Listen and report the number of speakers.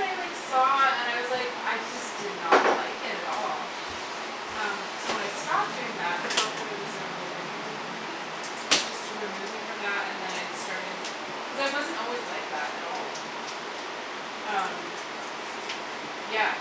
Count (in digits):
1